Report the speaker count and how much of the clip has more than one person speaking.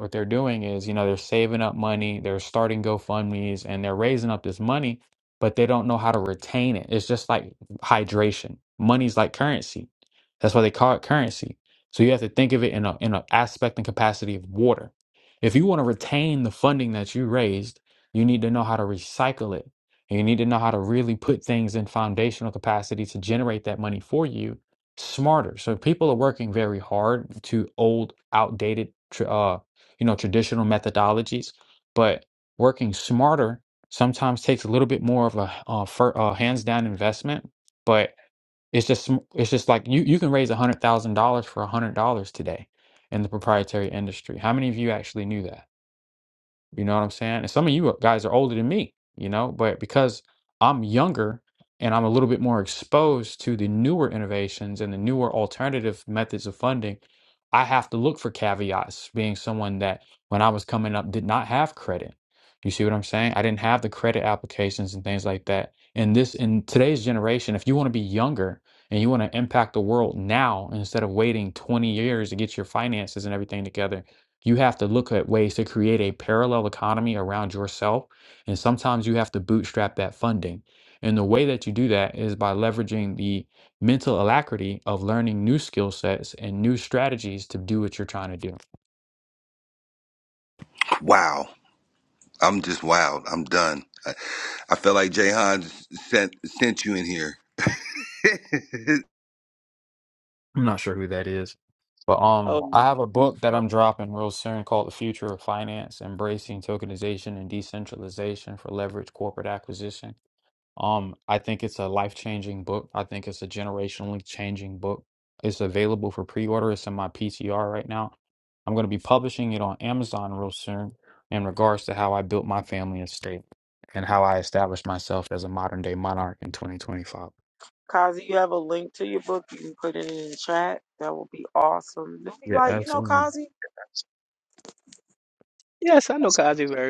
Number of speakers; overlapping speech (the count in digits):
4, about 1%